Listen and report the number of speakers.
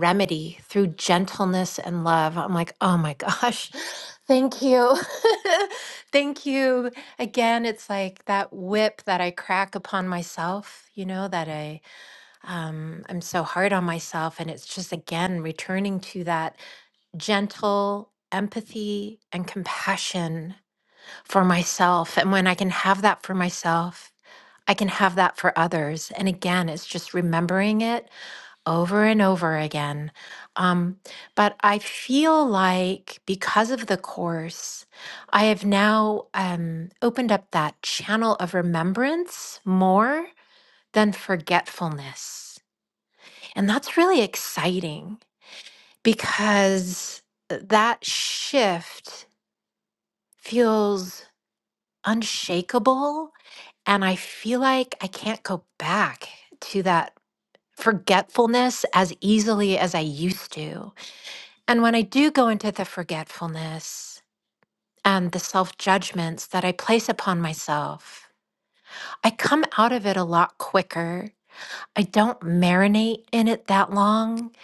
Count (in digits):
1